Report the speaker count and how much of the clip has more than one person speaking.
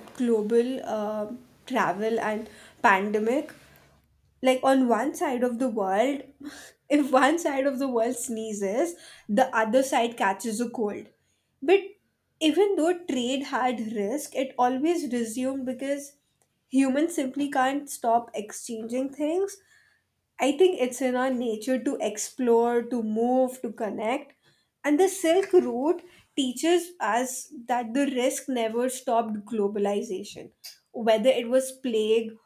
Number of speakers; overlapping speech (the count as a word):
one, no overlap